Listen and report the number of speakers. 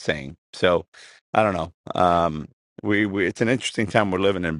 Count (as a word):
one